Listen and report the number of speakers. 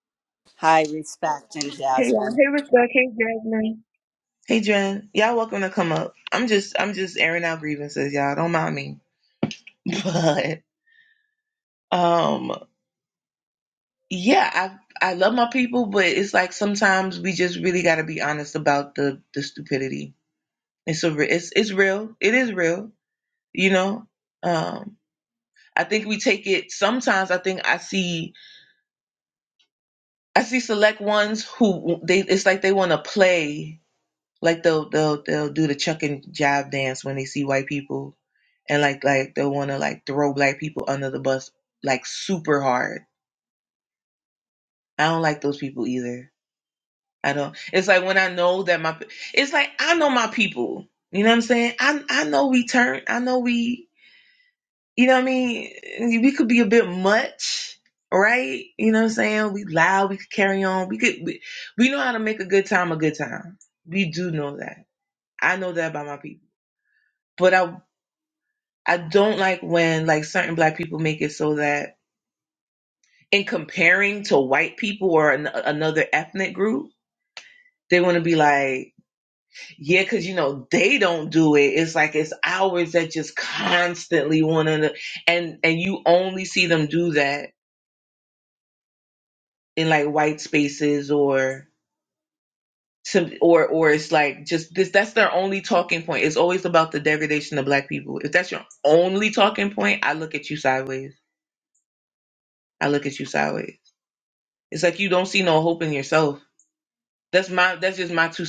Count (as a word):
two